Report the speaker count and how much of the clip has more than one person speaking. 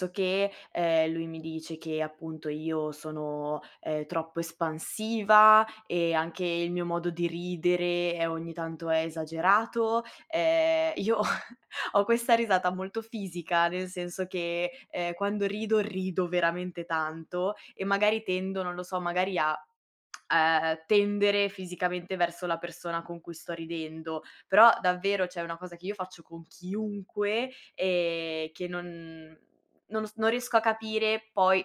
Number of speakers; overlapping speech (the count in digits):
1, no overlap